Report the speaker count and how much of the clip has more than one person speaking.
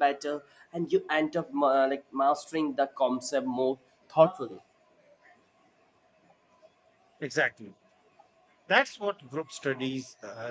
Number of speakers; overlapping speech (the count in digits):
2, no overlap